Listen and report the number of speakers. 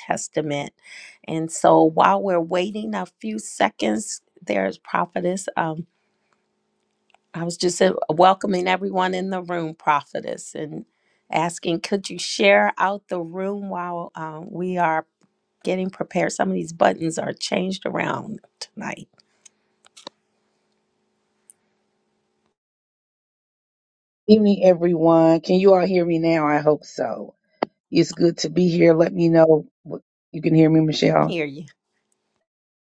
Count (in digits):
2